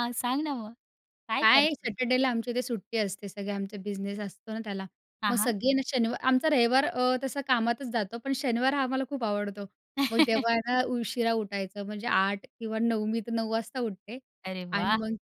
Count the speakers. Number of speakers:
2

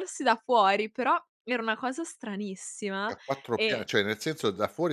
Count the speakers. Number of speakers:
2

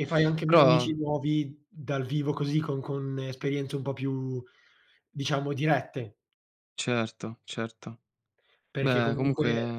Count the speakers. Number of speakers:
2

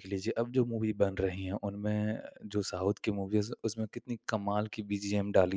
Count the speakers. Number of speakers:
1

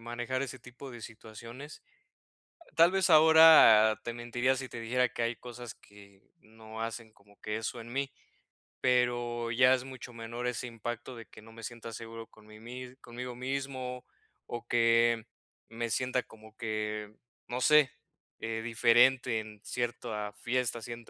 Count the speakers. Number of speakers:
1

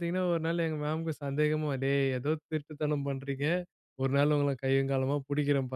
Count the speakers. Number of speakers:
1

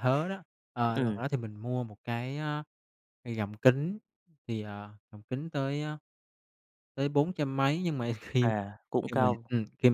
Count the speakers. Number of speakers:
2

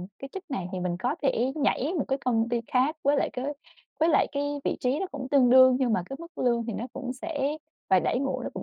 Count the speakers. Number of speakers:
1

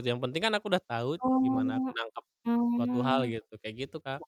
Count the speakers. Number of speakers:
2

